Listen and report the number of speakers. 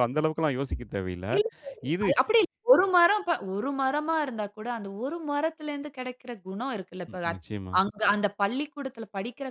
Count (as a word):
two